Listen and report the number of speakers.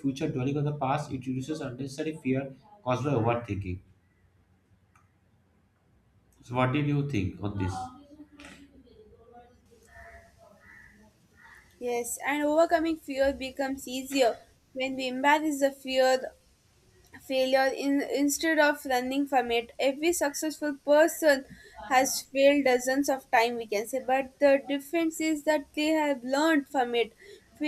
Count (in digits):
2